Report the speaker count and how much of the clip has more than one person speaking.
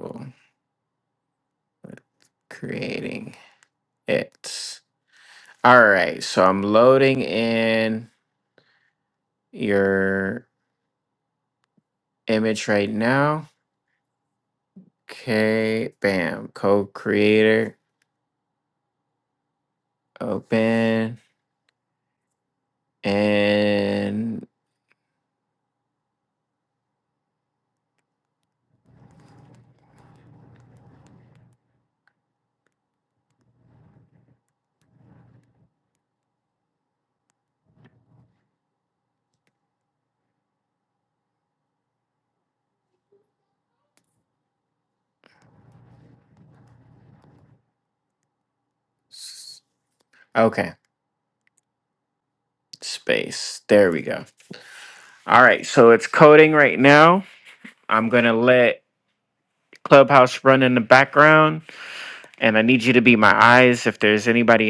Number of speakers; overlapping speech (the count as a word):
one, no overlap